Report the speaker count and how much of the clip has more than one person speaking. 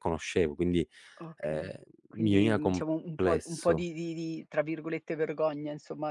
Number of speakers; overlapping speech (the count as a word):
two, about 18%